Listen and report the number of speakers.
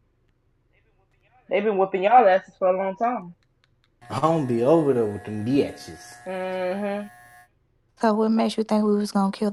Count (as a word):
three